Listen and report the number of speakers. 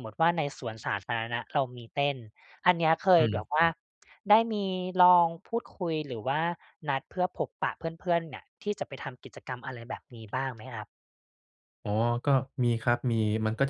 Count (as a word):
two